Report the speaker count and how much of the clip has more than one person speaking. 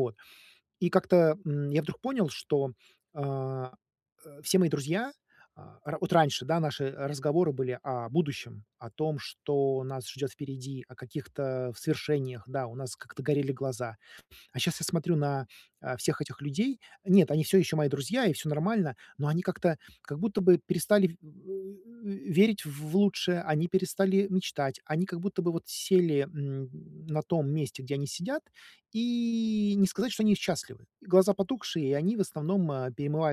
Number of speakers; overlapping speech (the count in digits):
1, no overlap